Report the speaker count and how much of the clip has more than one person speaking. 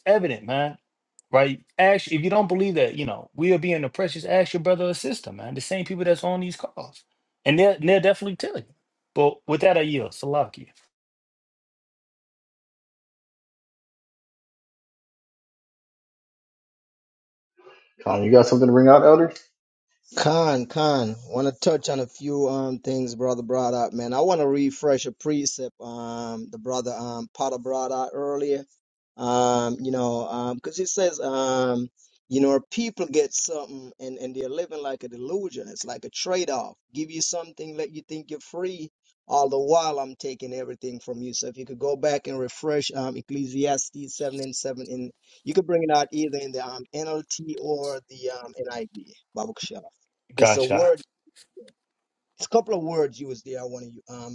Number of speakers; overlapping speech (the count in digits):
3, about 1%